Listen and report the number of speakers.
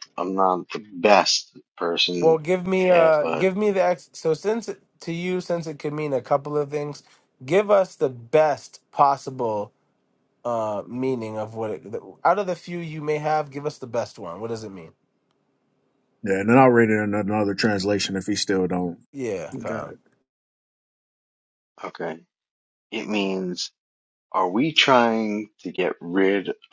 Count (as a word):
three